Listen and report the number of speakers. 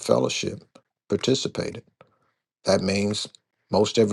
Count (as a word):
one